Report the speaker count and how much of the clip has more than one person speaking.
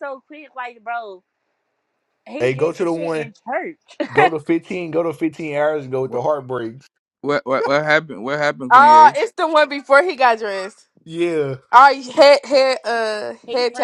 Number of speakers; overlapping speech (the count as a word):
four, about 13%